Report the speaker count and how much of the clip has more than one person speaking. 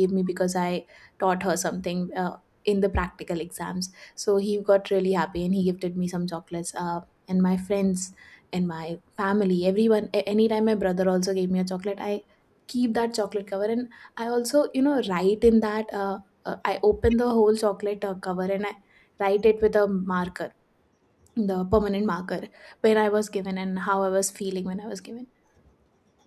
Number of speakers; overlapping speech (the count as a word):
one, no overlap